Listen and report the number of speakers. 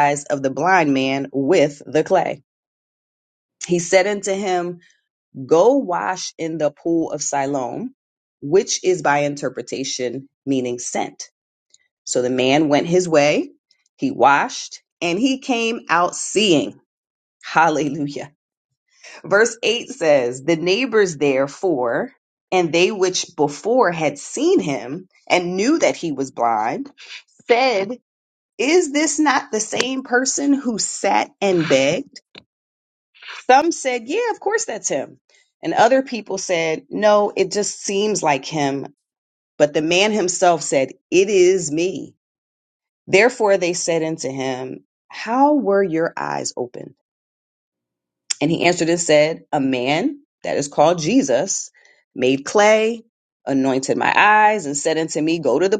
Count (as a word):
one